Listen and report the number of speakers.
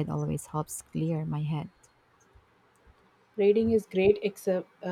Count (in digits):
2